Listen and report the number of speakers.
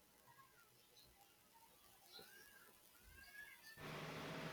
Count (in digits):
0